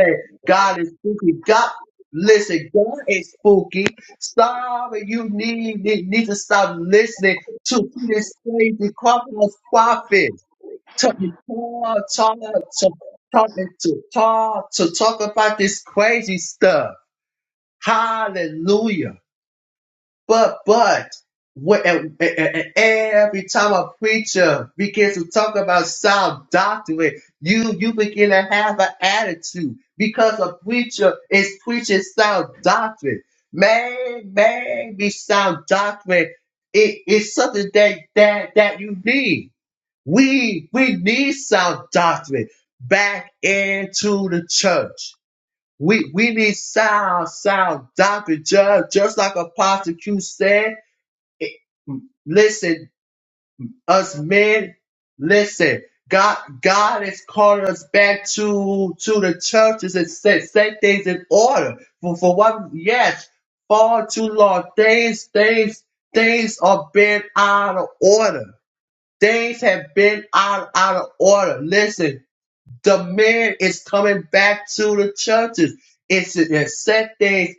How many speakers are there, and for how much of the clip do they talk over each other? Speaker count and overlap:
1, no overlap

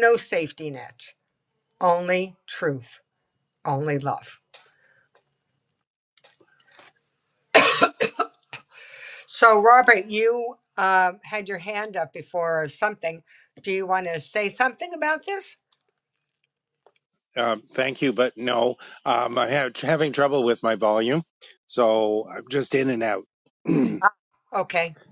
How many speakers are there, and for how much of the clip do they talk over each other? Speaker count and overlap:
2, no overlap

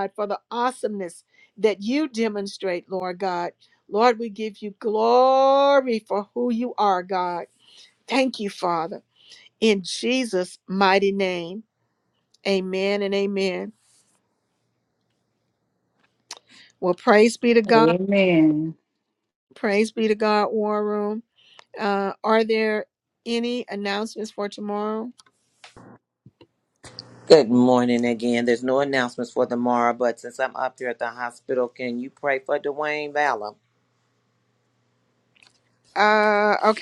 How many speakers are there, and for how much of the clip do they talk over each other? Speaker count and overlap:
3, about 1%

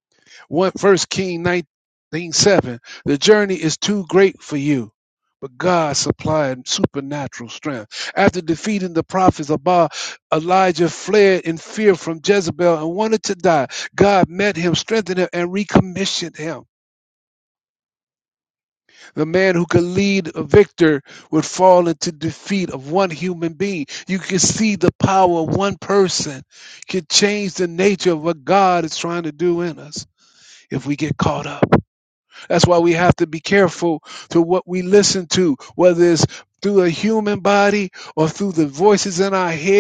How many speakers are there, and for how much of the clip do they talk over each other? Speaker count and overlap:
1, no overlap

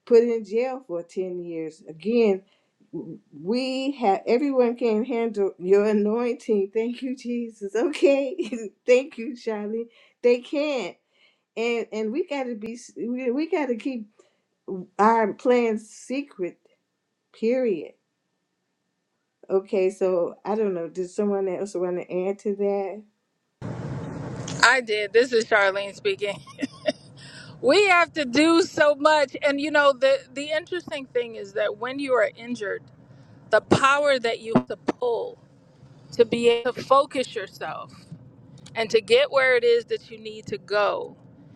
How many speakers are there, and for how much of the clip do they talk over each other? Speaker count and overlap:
2, no overlap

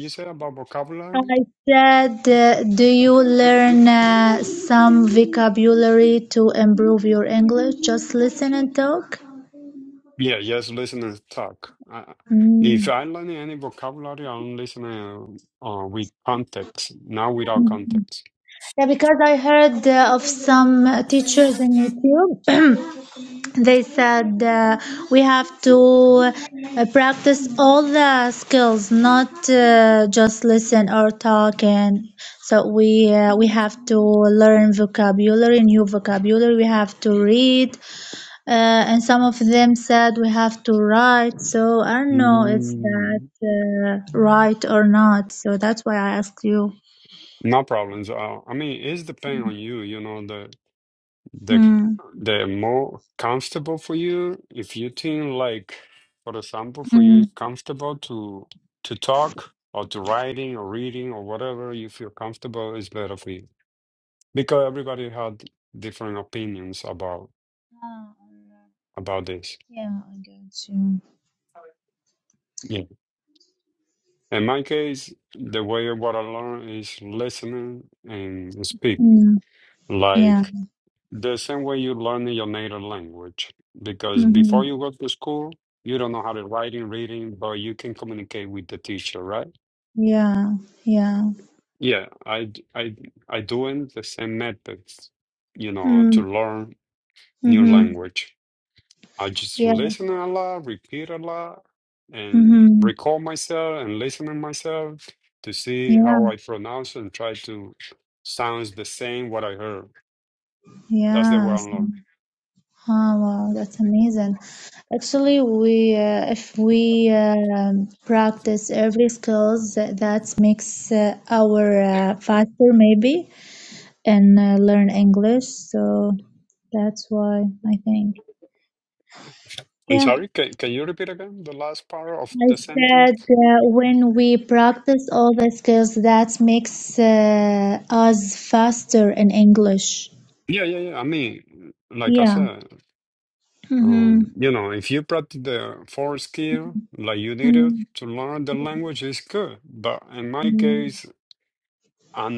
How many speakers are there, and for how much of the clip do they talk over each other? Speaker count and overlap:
2, about 5%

